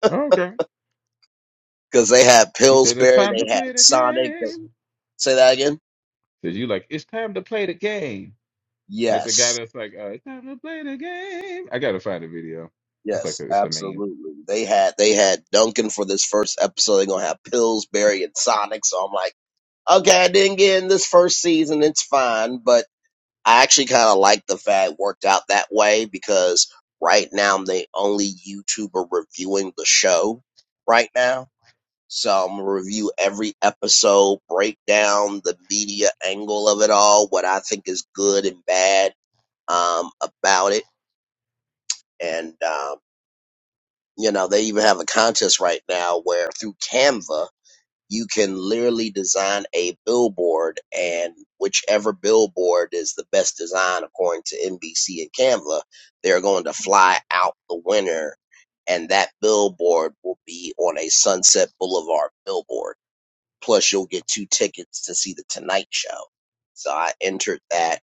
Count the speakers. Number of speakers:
2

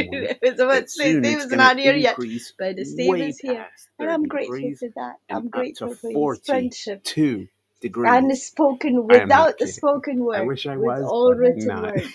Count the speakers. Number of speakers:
2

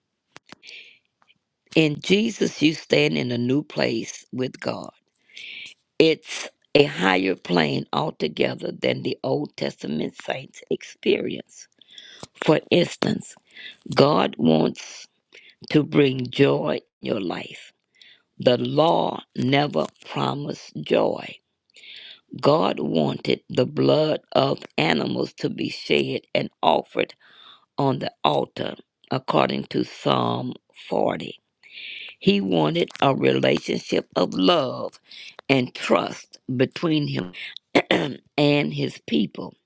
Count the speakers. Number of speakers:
1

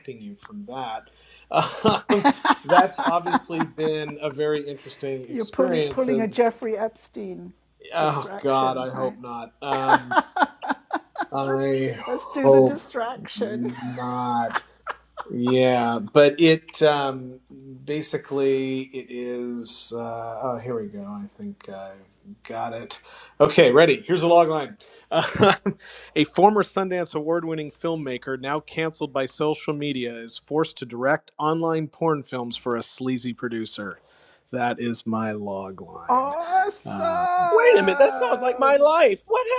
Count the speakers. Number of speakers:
3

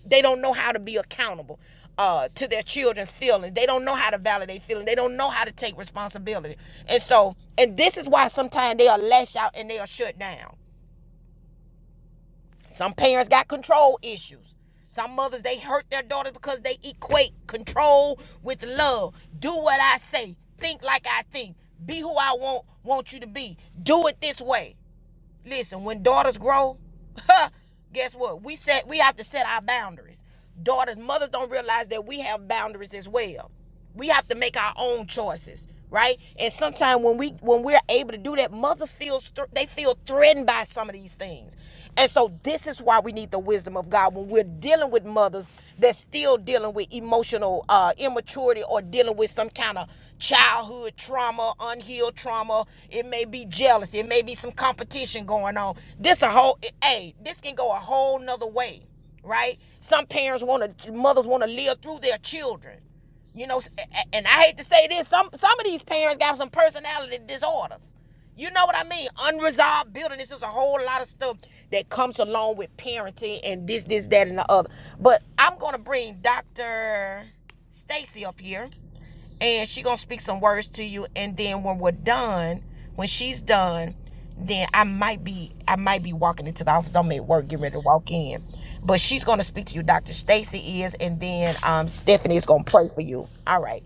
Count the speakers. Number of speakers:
1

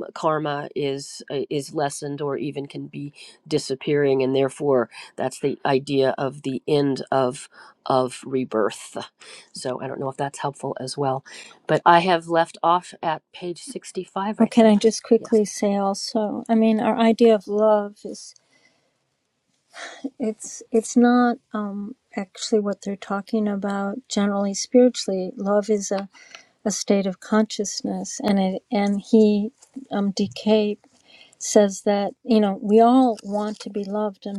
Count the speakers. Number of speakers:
2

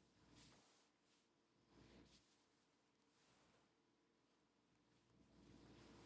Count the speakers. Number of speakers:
0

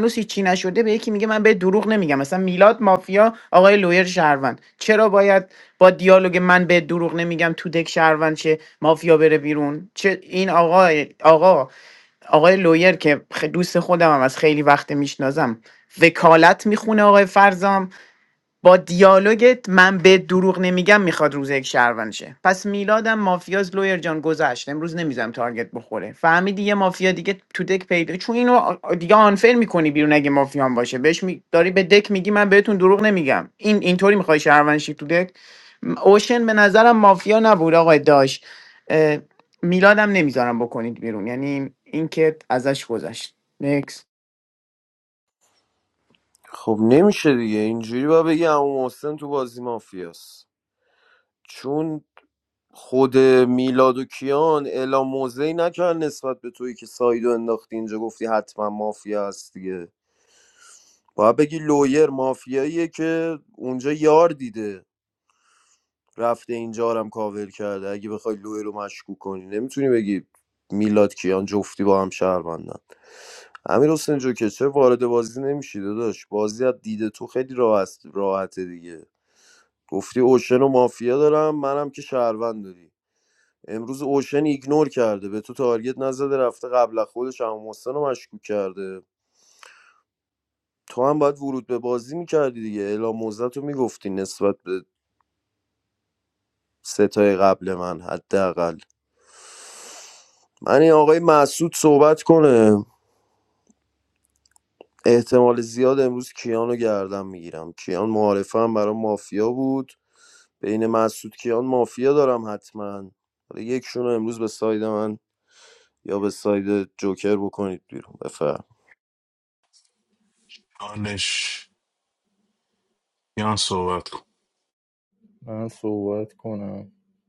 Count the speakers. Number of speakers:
4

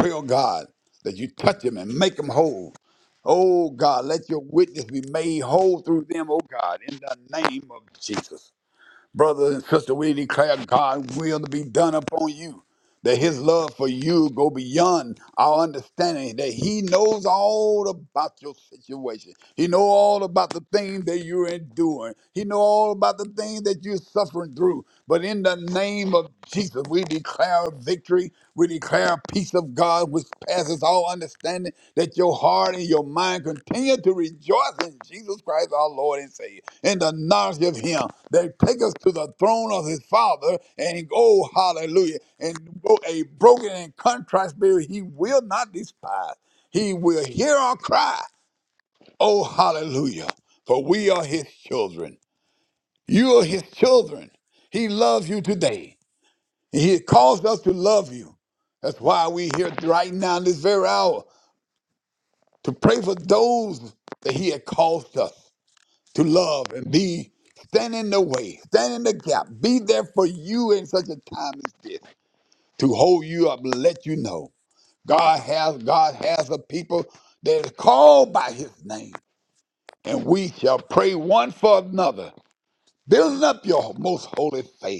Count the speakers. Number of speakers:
1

